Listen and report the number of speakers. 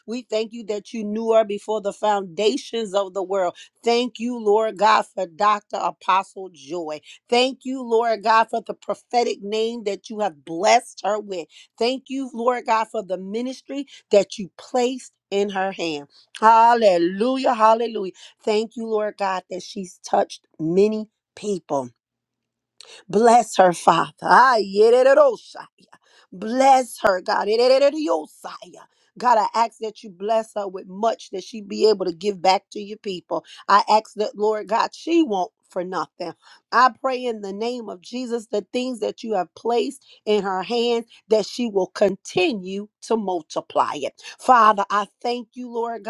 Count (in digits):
1